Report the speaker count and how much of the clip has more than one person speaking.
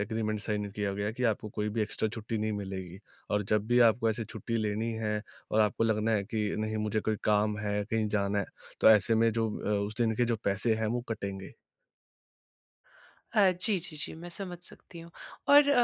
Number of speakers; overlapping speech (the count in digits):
2, no overlap